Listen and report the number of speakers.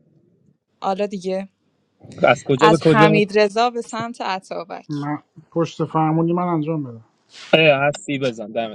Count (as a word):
three